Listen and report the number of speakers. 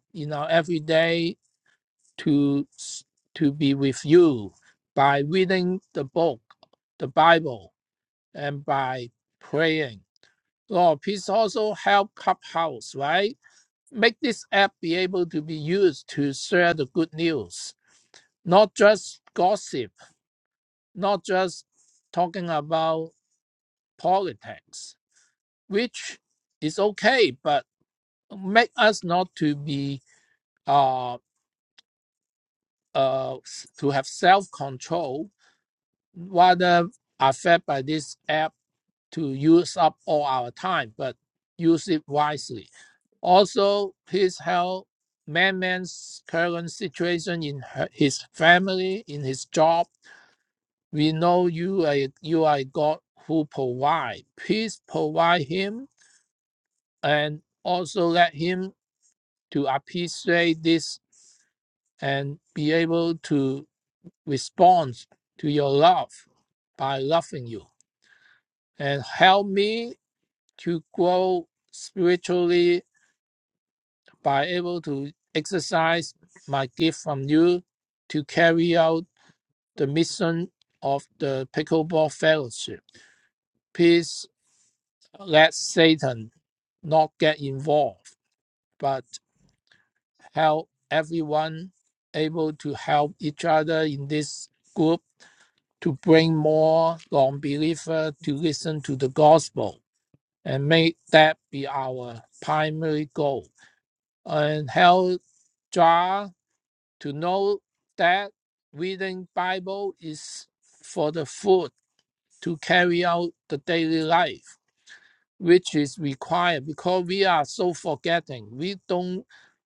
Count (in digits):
1